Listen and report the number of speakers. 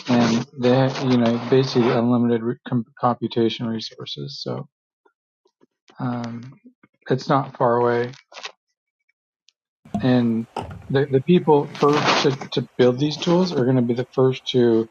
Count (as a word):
one